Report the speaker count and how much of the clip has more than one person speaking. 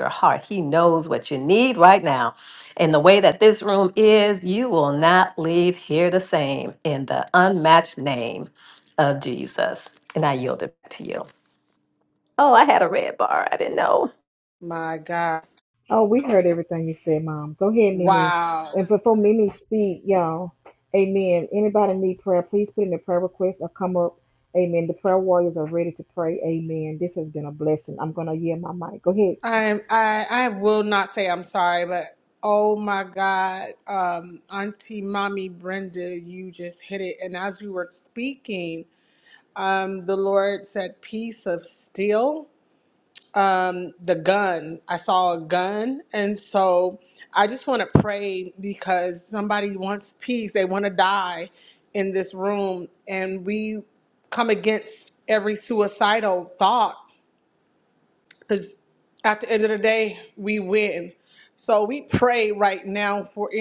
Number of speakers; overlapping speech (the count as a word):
three, about 1%